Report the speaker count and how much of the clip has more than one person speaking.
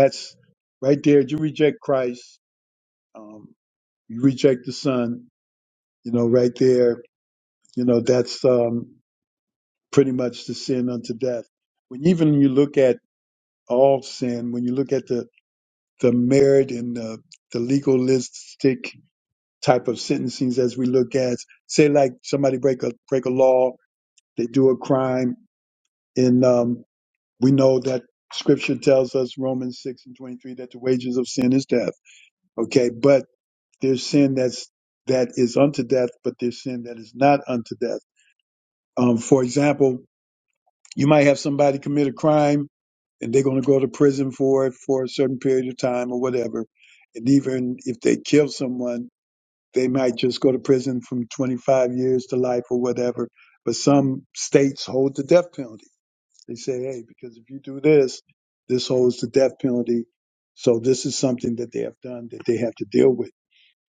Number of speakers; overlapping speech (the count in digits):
1, no overlap